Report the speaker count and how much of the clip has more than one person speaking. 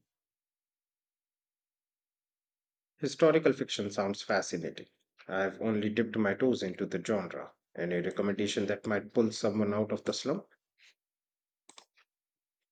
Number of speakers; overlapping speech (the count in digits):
1, no overlap